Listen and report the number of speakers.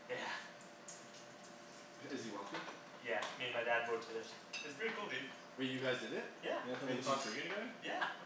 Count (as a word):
three